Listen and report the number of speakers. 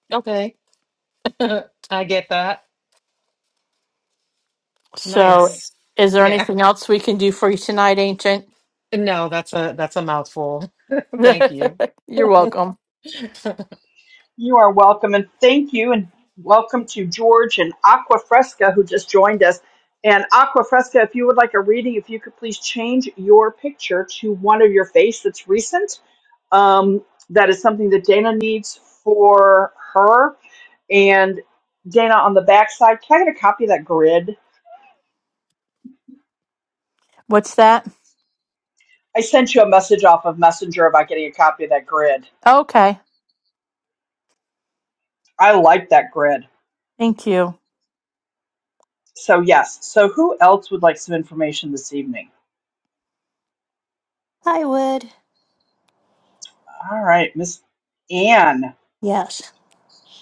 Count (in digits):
4